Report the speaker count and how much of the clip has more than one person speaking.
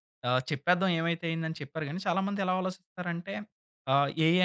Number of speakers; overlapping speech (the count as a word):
one, no overlap